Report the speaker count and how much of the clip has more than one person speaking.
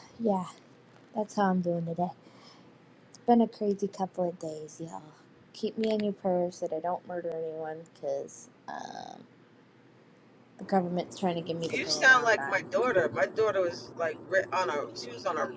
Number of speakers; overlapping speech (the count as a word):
two, about 6%